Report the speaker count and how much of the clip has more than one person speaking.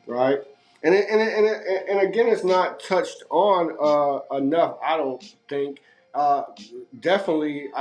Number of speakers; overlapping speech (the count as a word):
one, no overlap